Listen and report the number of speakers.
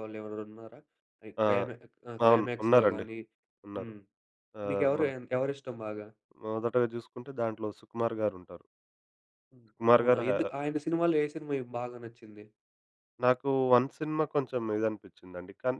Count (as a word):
two